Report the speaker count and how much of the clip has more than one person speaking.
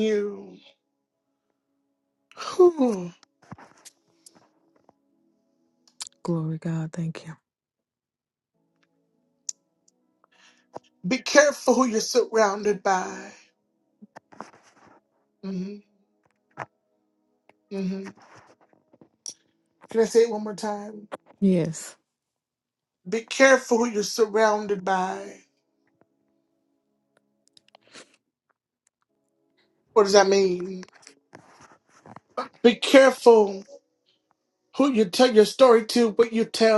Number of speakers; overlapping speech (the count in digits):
2, no overlap